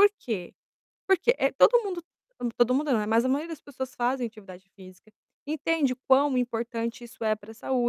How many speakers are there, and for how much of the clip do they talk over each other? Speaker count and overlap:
1, no overlap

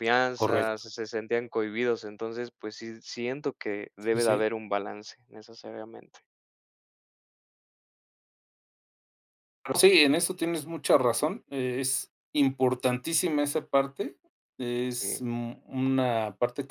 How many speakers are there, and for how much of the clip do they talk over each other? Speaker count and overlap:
2, about 5%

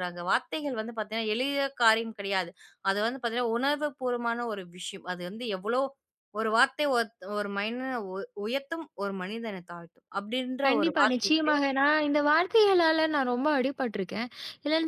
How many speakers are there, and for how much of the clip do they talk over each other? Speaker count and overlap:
2, about 6%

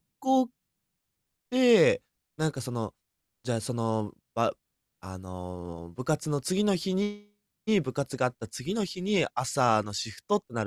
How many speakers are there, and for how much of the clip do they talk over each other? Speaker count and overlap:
1, no overlap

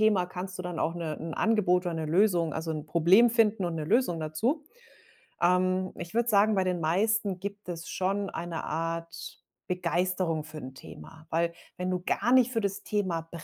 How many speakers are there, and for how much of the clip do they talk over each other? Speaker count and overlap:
1, no overlap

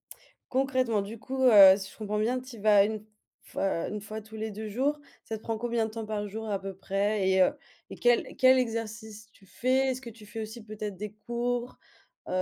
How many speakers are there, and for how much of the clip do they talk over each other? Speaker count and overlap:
1, no overlap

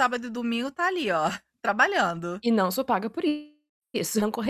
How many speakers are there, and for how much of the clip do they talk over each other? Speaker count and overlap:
2, about 2%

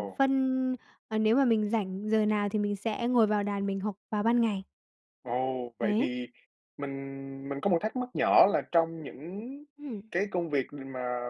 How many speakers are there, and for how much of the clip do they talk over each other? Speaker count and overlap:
2, about 4%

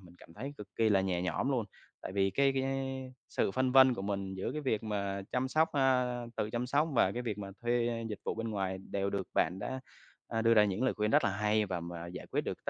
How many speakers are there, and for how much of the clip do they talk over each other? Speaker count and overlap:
1, no overlap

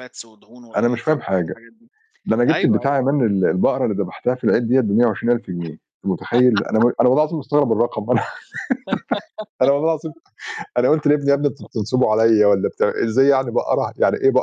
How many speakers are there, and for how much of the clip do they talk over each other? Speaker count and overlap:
2, about 9%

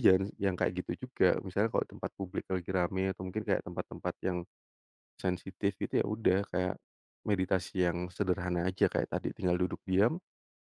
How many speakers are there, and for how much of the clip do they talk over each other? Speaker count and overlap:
1, no overlap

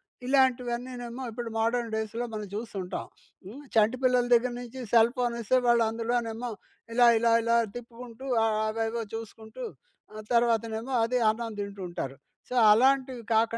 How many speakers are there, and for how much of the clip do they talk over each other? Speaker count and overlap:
1, no overlap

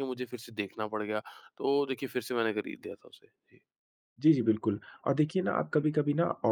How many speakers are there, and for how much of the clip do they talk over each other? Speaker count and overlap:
2, no overlap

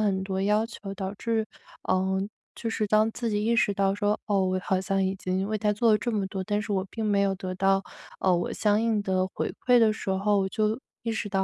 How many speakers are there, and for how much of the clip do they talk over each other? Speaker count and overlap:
1, no overlap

